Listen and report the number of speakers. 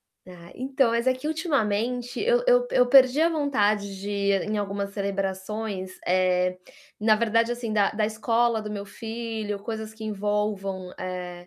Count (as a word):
one